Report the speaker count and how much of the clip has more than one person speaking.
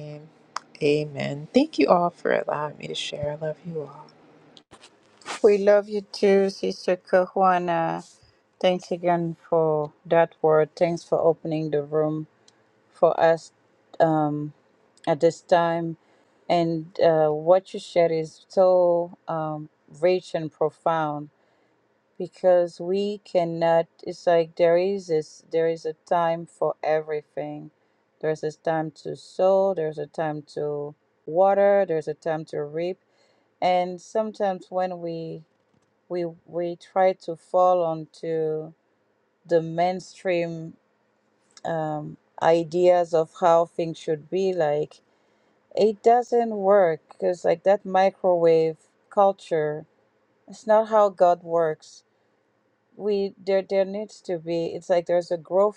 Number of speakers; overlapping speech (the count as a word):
two, no overlap